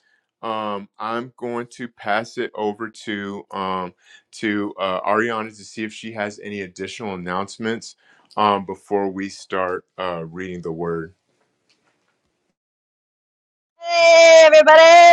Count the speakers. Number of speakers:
2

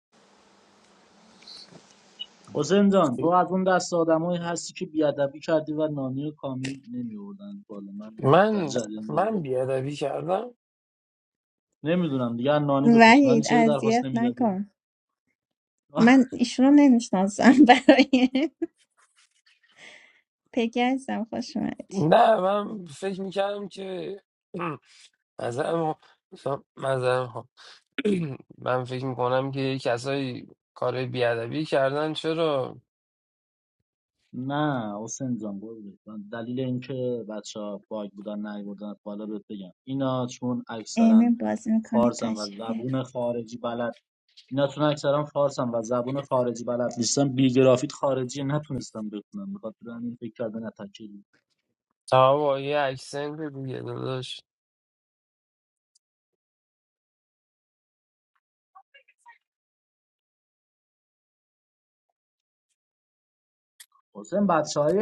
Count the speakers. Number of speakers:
3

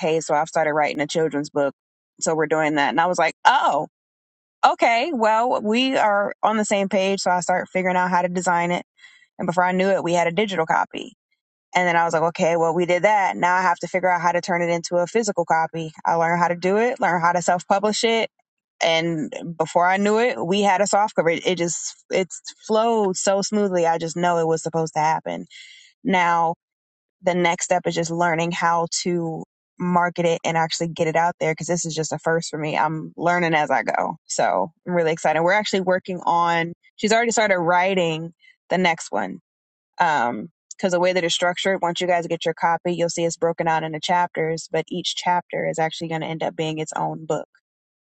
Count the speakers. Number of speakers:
1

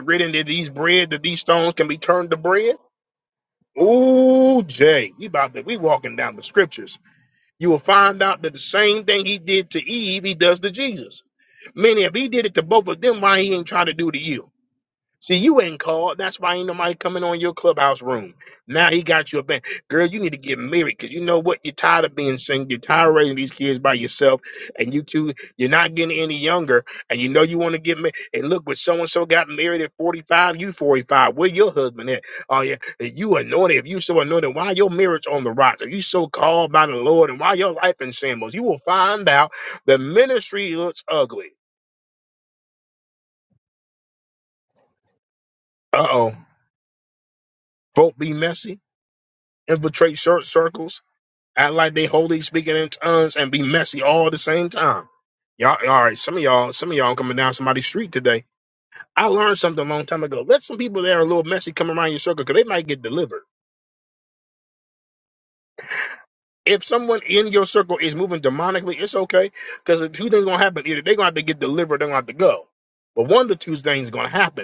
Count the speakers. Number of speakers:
1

